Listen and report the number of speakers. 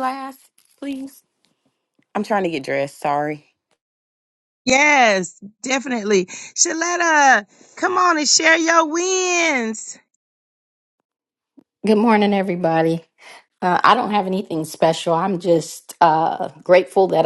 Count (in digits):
3